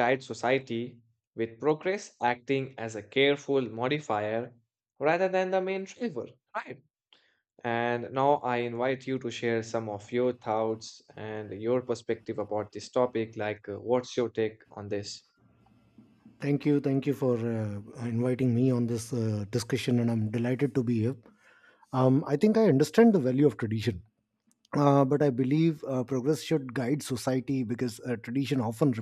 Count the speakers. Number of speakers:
2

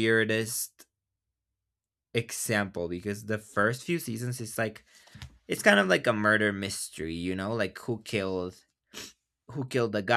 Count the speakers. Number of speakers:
1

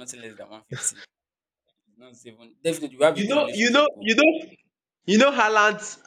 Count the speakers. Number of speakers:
2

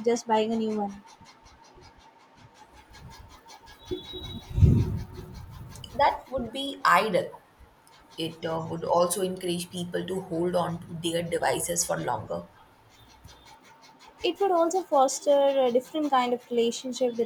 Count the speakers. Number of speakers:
2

